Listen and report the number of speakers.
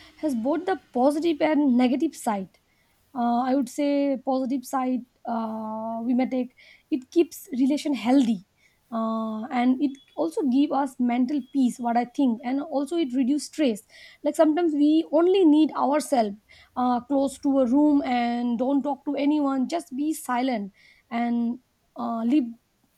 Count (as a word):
one